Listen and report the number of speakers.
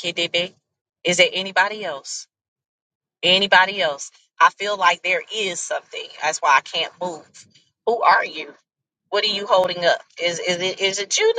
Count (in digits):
1